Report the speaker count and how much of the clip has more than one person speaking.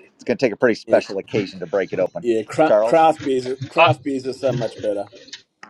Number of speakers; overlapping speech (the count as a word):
two, about 8%